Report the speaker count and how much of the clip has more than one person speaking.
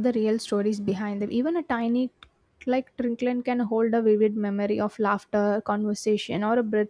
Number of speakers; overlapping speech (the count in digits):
1, no overlap